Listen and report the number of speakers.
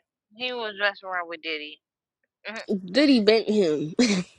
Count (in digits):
2